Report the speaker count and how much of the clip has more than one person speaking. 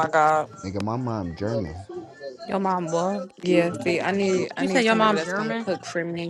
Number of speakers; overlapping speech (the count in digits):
3, about 16%